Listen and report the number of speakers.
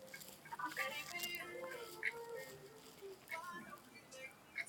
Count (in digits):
0